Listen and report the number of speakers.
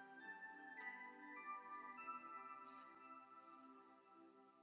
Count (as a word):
zero